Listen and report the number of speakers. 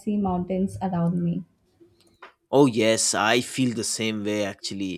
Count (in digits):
2